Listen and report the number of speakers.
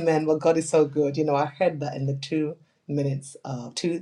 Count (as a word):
one